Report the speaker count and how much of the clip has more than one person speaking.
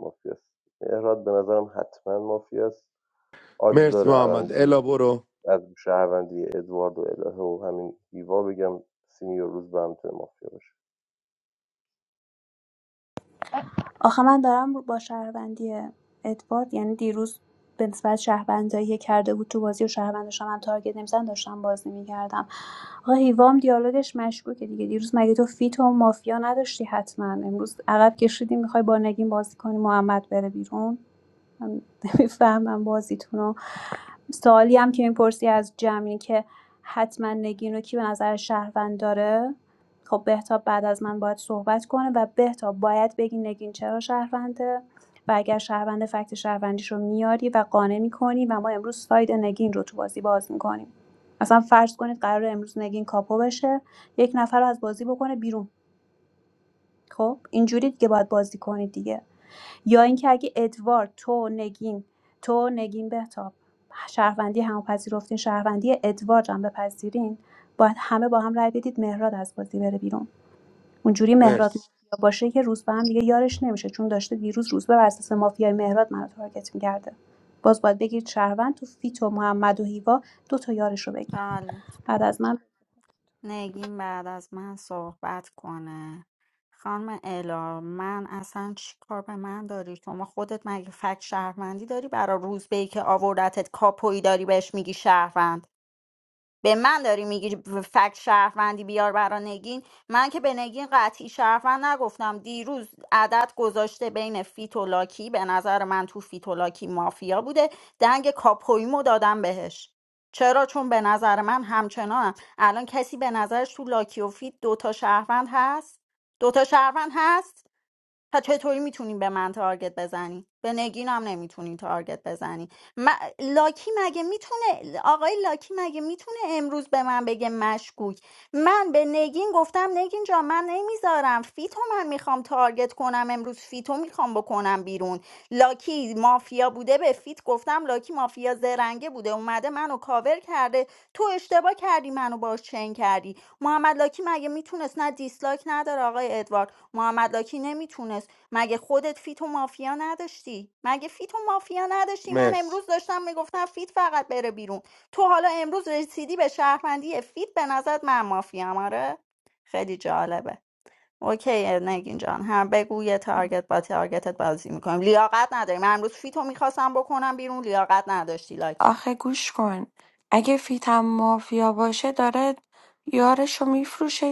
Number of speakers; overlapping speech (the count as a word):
five, about 1%